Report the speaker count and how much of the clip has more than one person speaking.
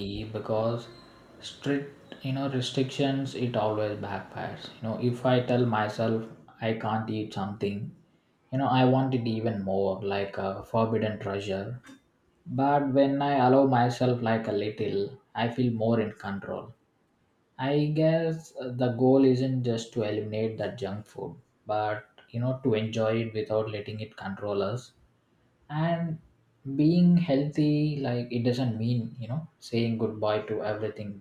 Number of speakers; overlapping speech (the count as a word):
one, no overlap